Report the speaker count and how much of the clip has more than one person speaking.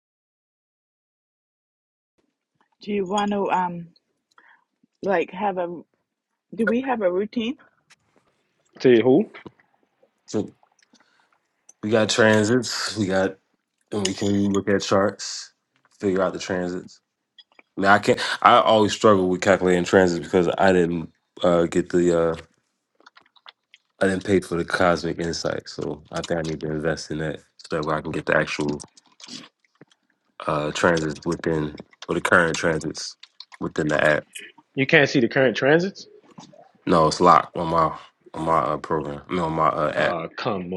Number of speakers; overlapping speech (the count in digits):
3, under 1%